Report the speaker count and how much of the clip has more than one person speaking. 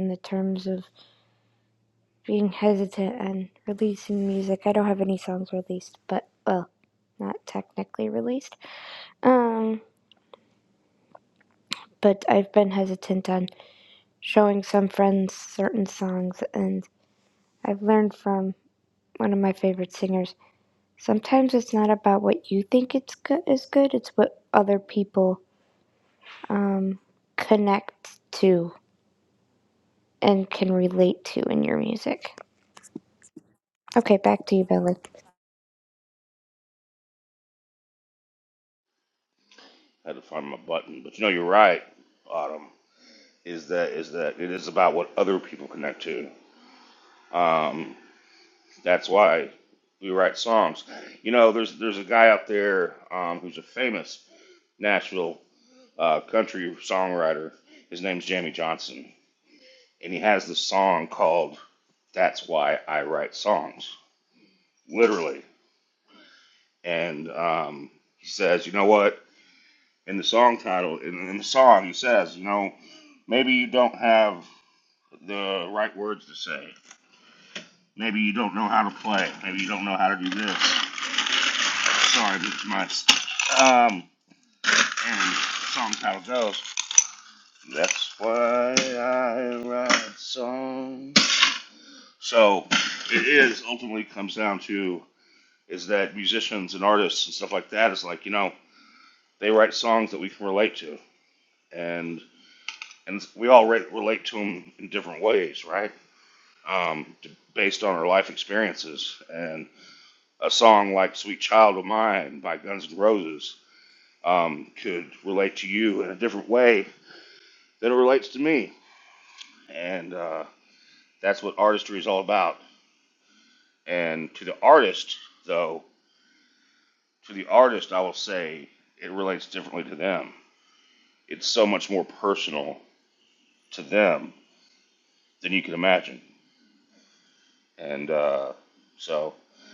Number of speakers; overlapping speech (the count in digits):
2, no overlap